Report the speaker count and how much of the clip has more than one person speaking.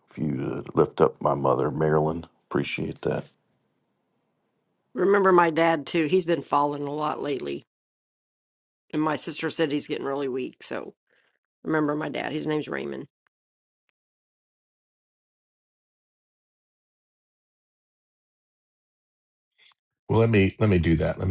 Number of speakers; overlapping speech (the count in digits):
3, no overlap